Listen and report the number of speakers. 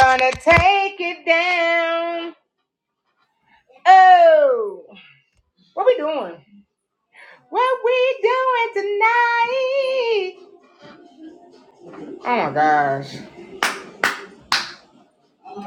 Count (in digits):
1